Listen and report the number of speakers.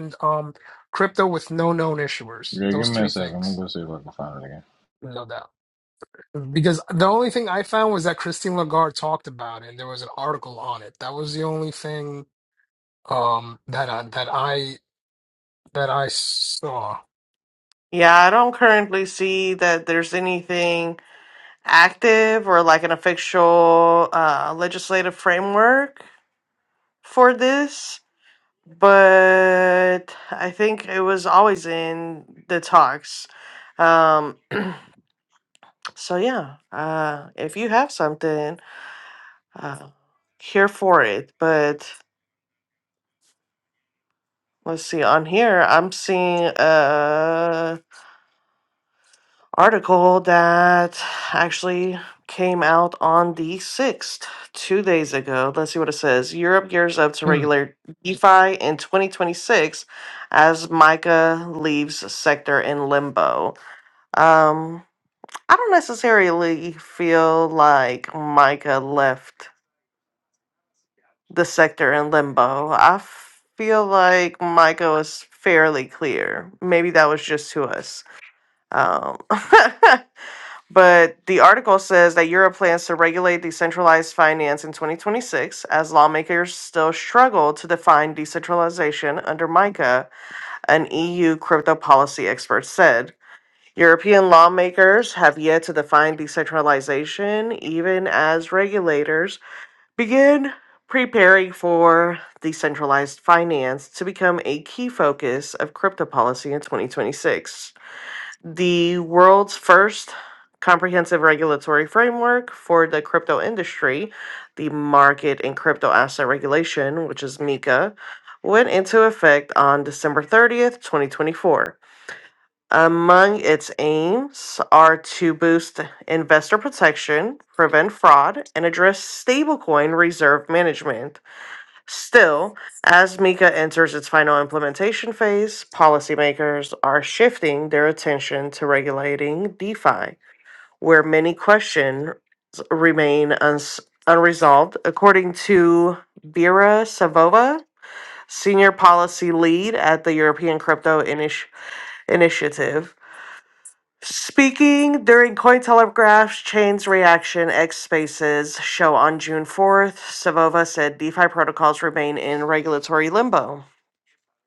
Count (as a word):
three